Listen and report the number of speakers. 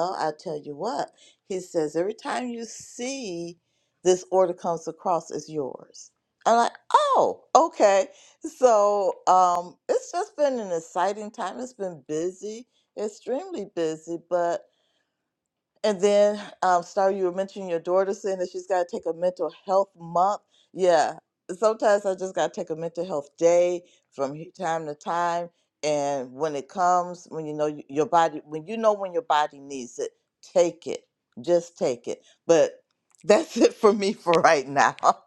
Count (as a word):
one